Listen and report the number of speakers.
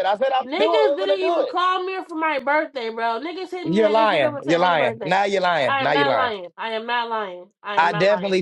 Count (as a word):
two